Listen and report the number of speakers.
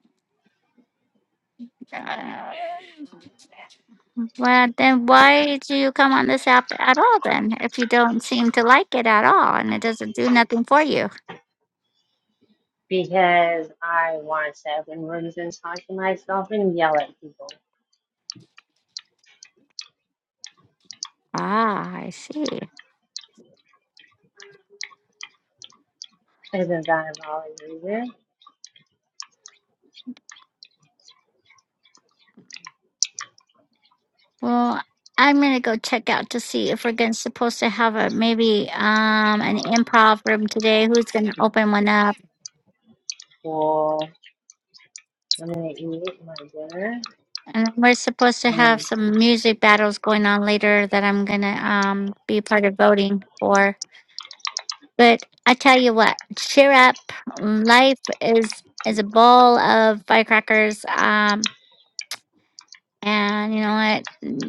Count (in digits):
2